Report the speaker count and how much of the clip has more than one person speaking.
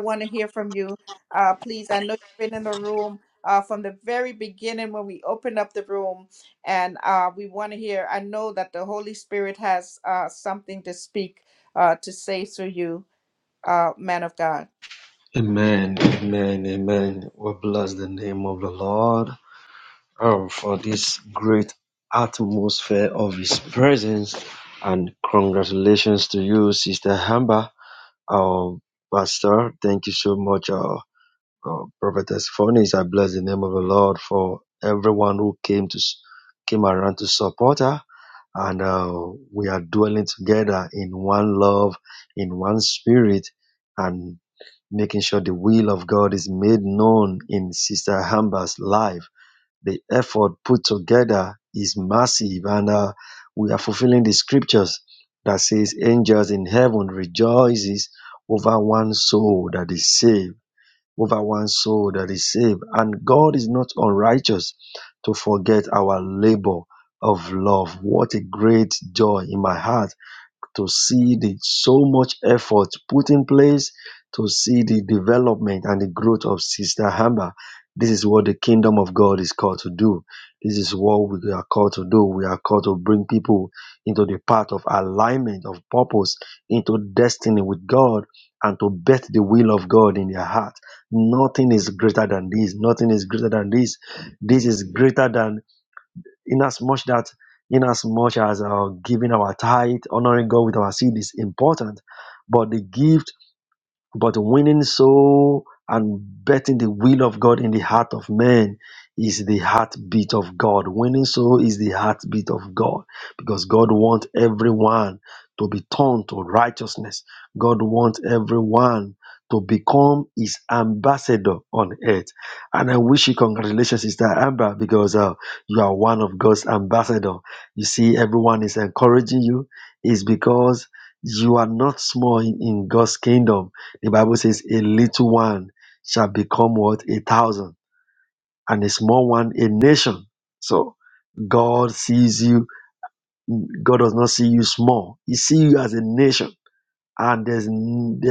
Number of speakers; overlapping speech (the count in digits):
2, no overlap